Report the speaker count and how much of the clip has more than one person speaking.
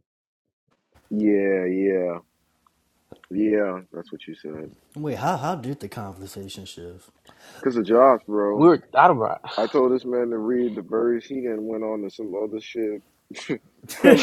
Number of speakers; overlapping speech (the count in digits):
3, about 2%